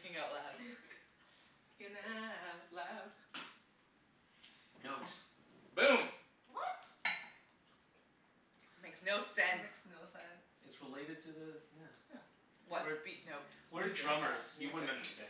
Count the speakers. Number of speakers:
4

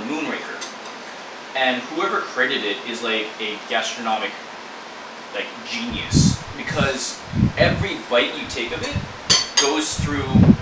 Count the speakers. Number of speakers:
1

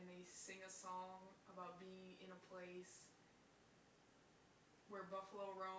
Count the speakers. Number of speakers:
1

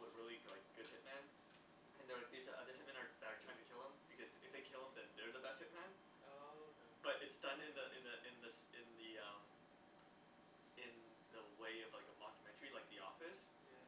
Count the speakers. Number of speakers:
2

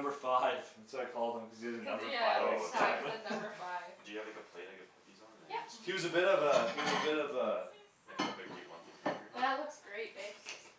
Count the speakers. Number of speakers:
4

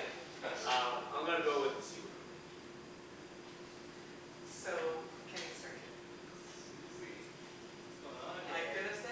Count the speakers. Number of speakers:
3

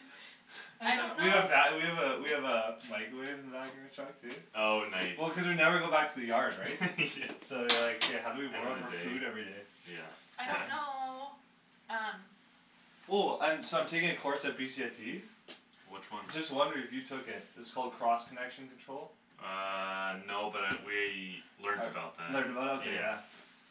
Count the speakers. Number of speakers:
3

